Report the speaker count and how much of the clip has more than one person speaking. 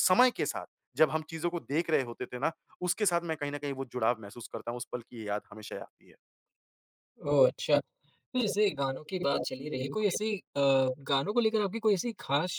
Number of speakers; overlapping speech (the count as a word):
two, no overlap